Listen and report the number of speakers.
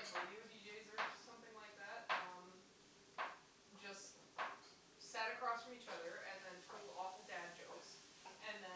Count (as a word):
one